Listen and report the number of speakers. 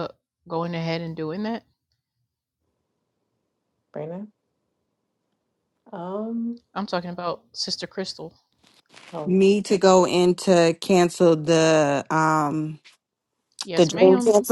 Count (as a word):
three